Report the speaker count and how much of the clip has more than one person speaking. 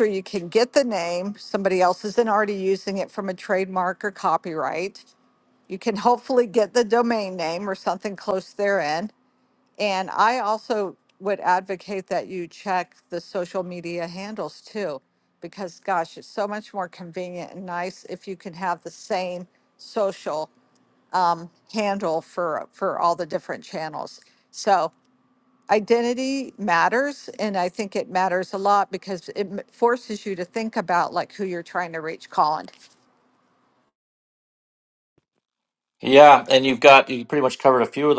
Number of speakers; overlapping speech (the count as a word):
two, no overlap